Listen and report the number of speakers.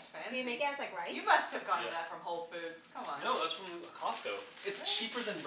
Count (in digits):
3